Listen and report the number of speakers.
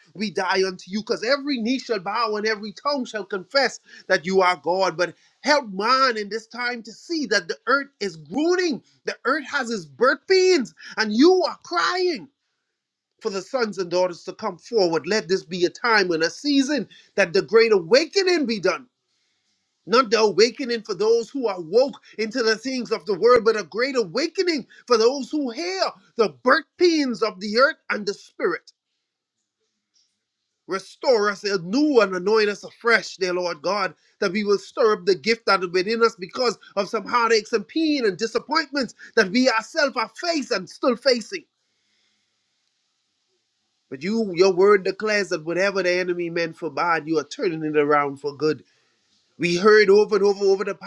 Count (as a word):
one